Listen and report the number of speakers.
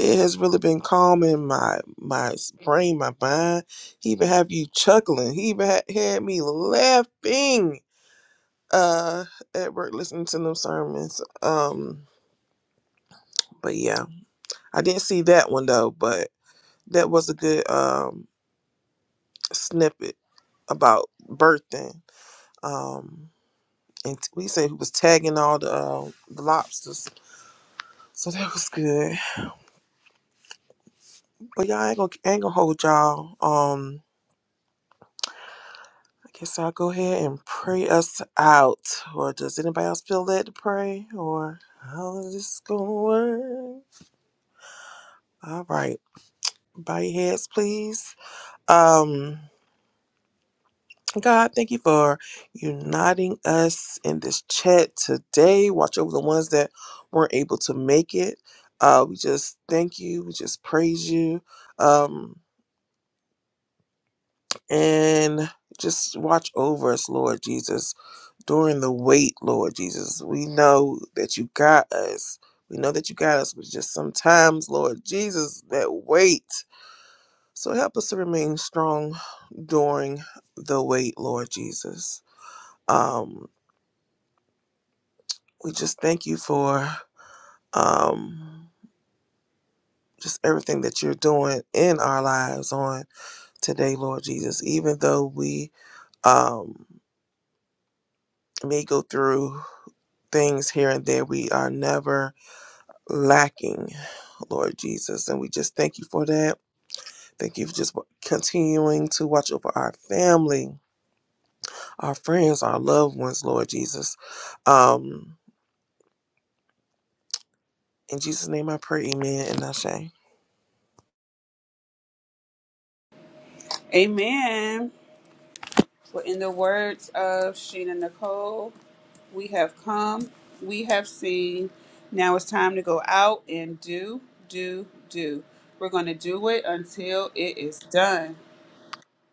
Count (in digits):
2